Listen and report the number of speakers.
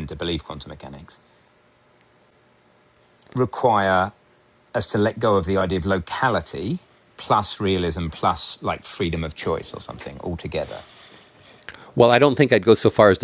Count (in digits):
2